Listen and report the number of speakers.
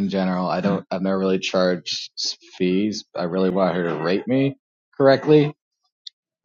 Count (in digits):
1